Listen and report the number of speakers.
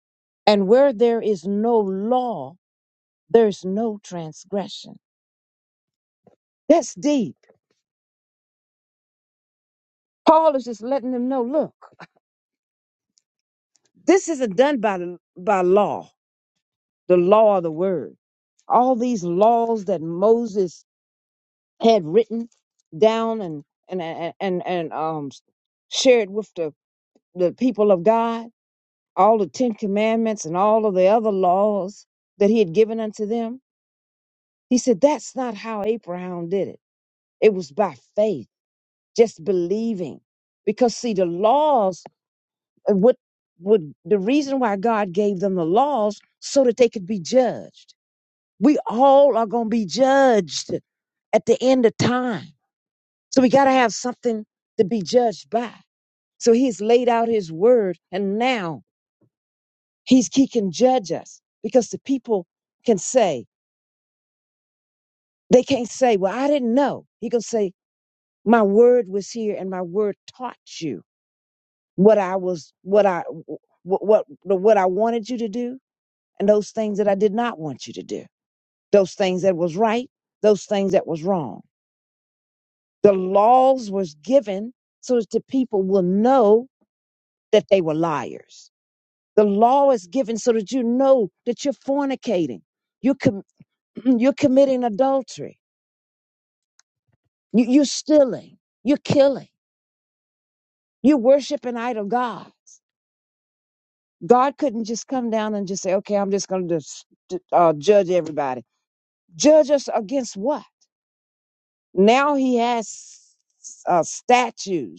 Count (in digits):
1